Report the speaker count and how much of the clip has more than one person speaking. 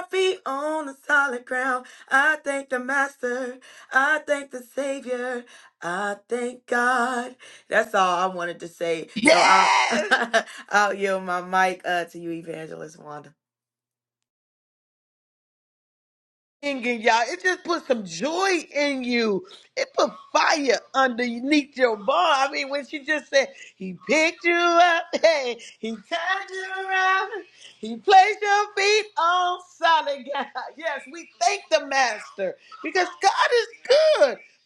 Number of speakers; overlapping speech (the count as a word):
two, about 2%